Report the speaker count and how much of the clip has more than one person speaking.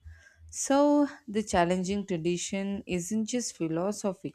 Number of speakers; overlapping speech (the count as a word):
one, no overlap